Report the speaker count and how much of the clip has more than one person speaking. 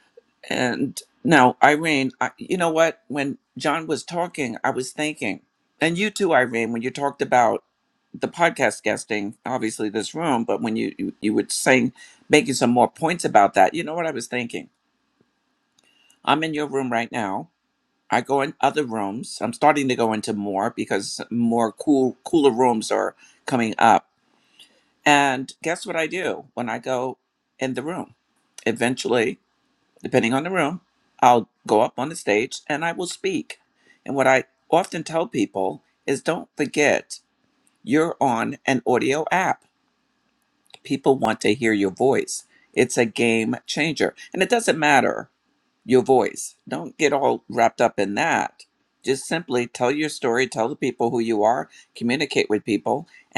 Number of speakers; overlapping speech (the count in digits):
1, no overlap